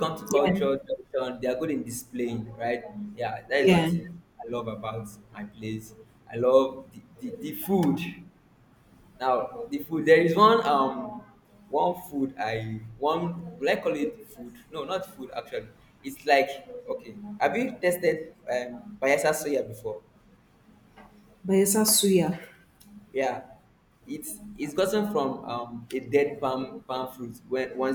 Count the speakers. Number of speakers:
2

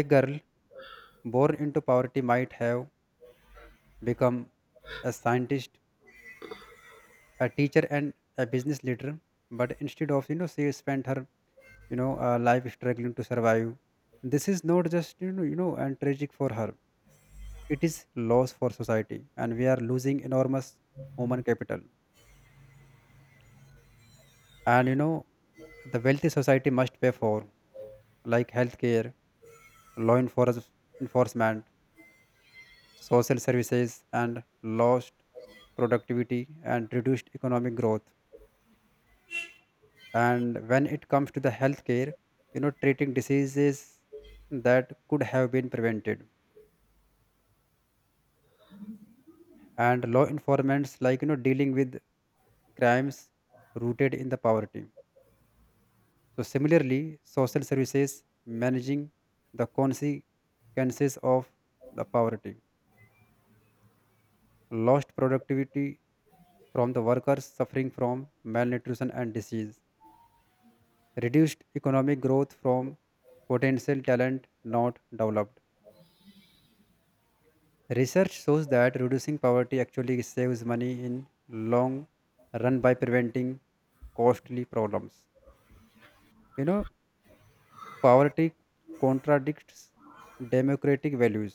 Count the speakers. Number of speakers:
1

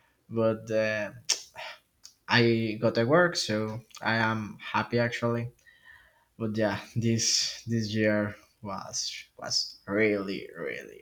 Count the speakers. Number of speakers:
1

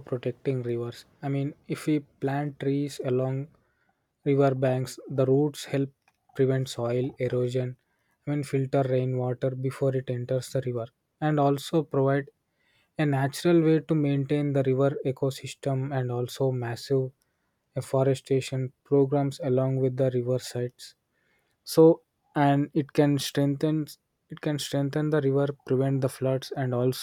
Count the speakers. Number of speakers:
1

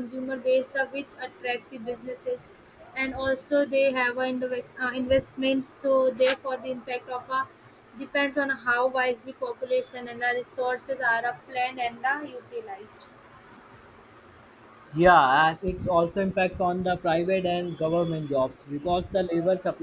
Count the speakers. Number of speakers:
2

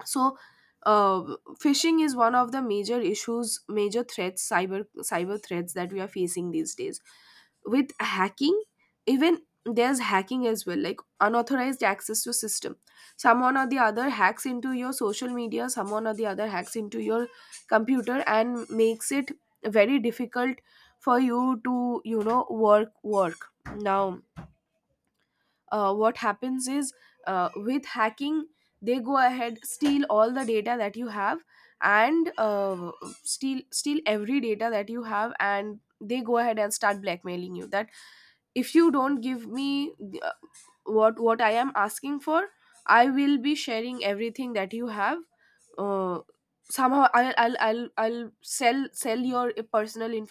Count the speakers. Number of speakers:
1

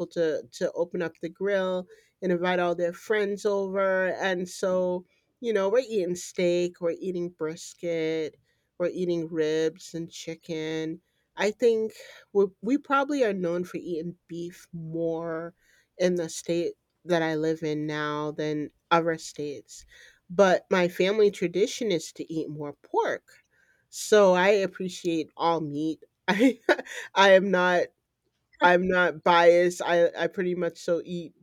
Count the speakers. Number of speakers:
1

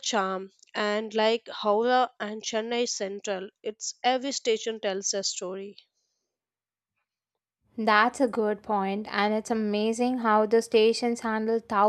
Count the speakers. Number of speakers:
2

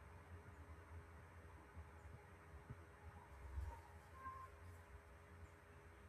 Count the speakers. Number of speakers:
0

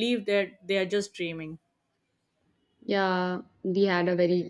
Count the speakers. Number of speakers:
2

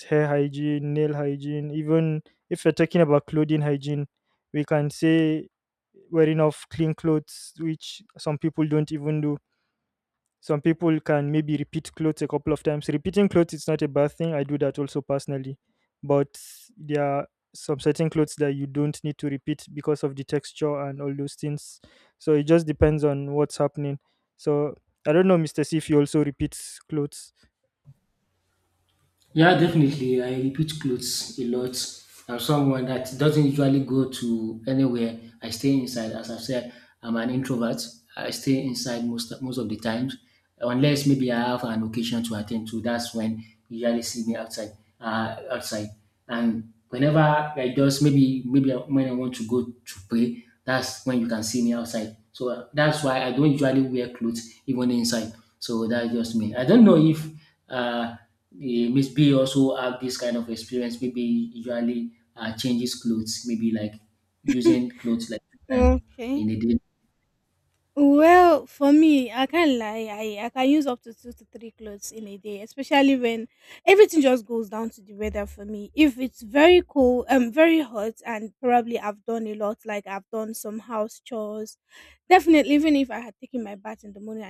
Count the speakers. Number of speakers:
3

